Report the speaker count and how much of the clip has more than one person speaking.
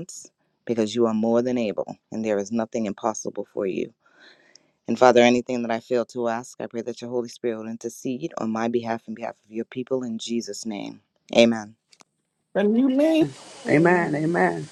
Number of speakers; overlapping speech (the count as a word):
three, about 3%